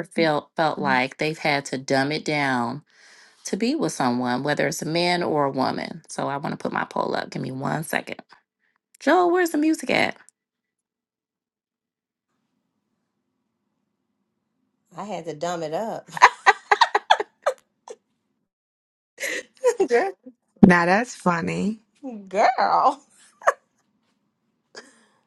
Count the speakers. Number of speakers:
3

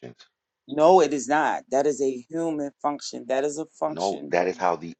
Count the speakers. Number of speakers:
2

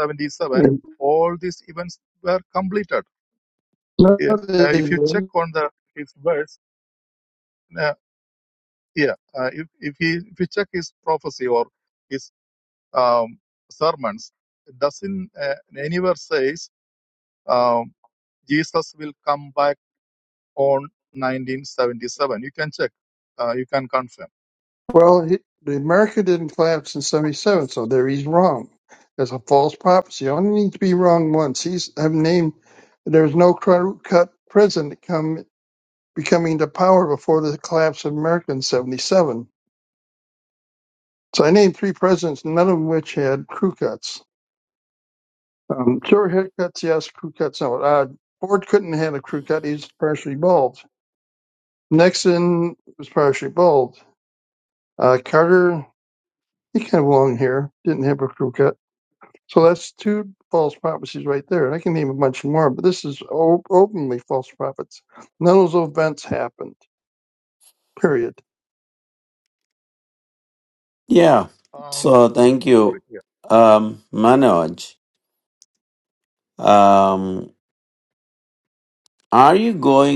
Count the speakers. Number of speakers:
3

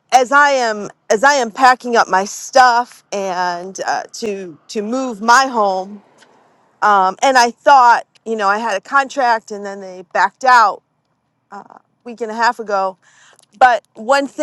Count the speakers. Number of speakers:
1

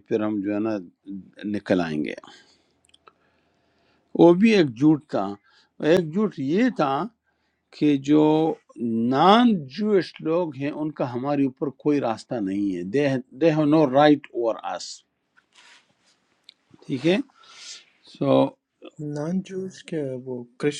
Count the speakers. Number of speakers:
2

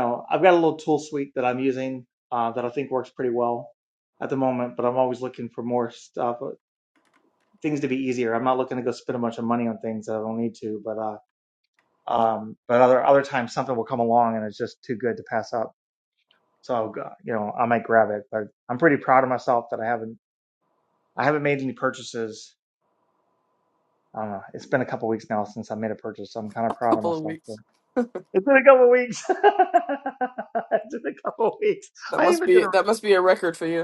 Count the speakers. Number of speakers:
2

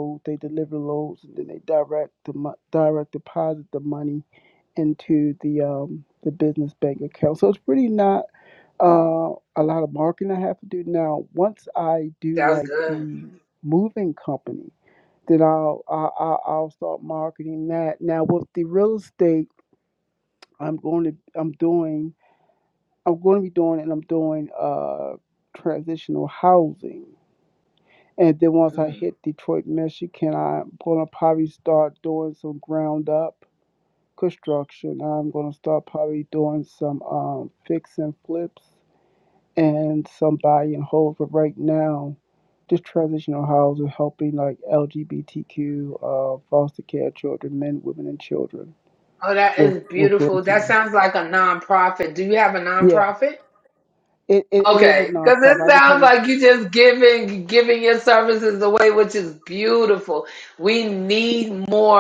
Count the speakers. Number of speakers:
2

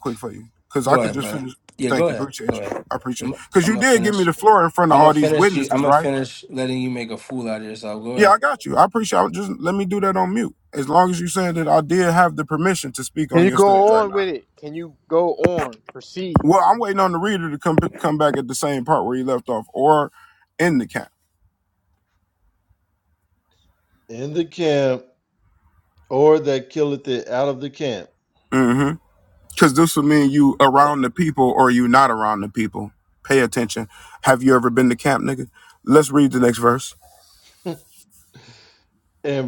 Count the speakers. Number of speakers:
4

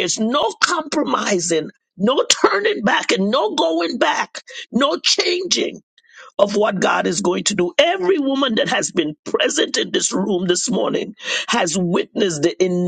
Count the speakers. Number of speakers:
1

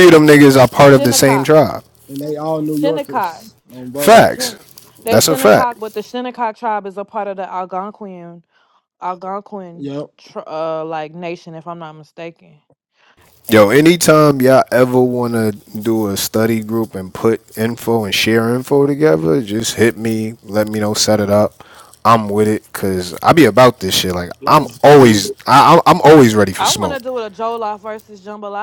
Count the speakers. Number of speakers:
3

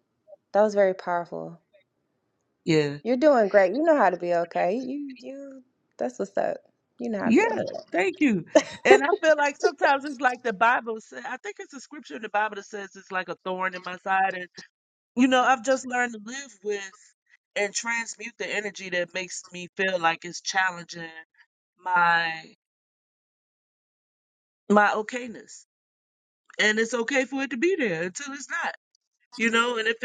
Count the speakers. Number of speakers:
2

